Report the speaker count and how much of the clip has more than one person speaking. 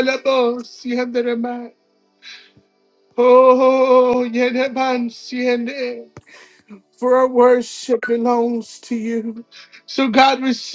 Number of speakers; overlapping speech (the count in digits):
1, no overlap